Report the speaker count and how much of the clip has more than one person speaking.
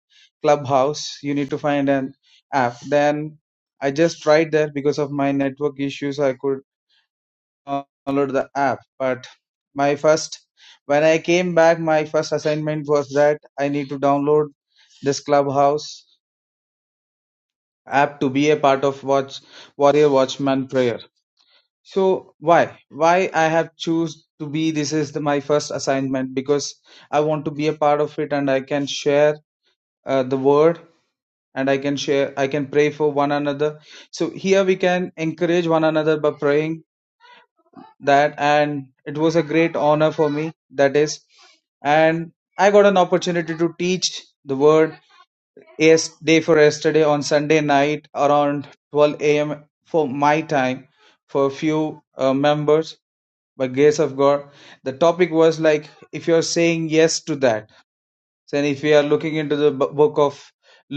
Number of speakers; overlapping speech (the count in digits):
1, no overlap